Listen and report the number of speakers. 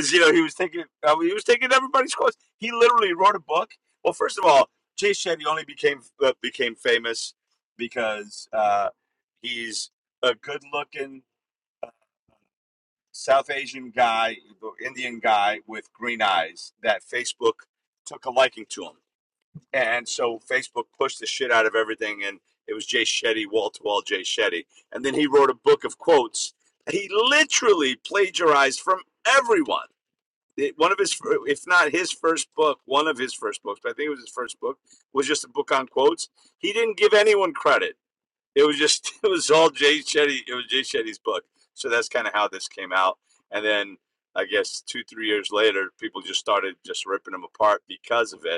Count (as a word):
one